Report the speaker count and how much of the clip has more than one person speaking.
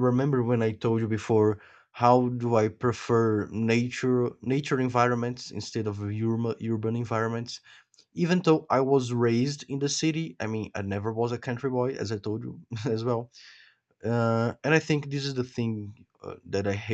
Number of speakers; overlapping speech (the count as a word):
one, no overlap